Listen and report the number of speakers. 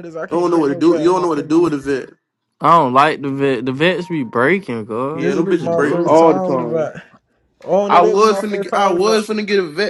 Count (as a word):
three